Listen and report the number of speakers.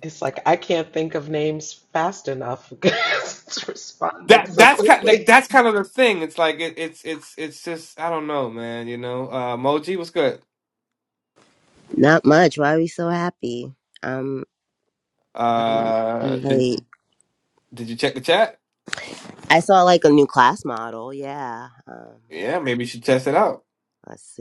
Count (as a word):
three